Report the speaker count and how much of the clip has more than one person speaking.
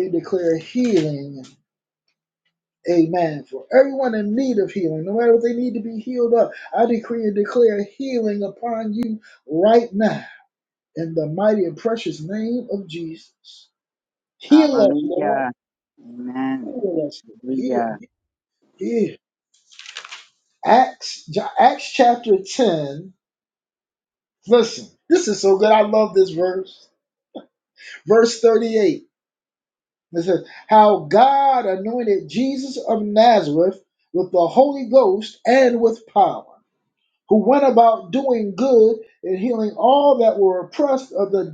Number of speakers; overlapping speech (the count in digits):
2, about 3%